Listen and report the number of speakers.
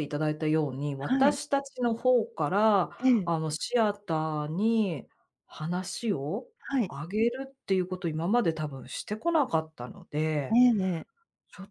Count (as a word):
two